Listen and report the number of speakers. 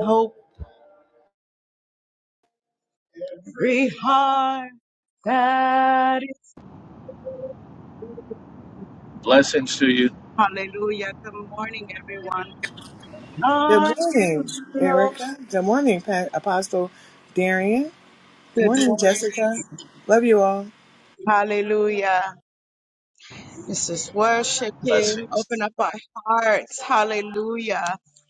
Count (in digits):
3